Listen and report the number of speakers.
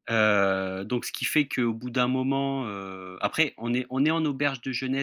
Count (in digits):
1